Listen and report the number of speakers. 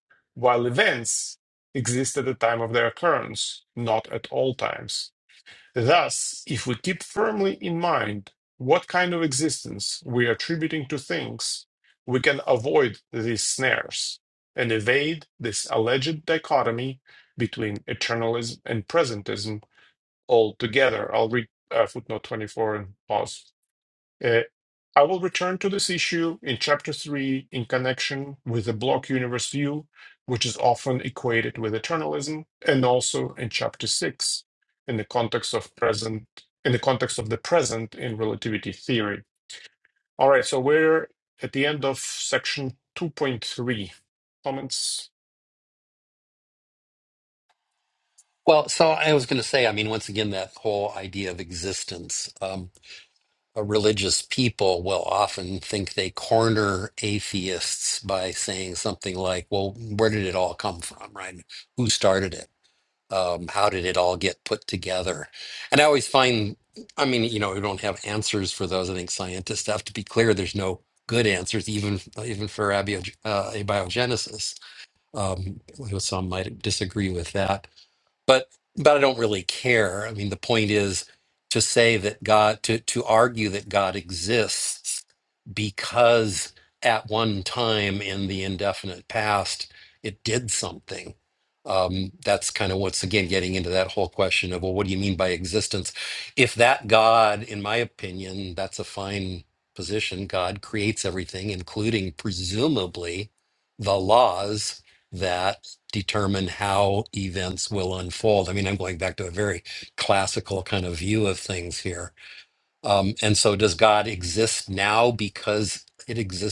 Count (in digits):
2